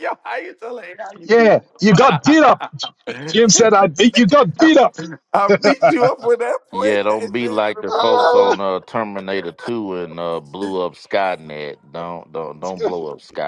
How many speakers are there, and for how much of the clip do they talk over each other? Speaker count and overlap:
3, about 23%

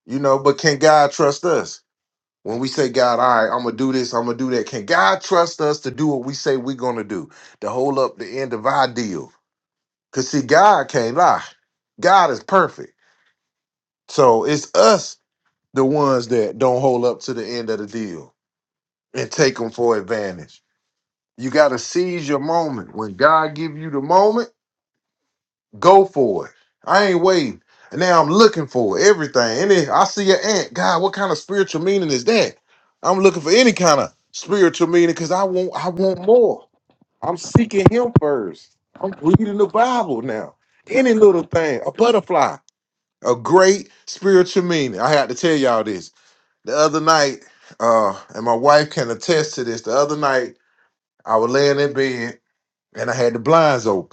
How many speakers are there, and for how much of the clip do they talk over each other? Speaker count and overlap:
1, no overlap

